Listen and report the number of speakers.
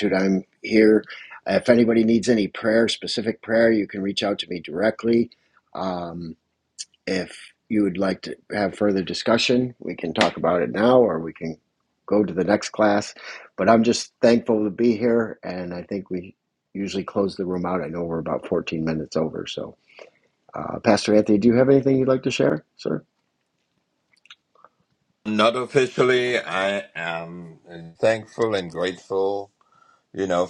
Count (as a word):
two